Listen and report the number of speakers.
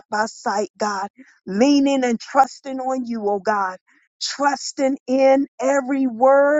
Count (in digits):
1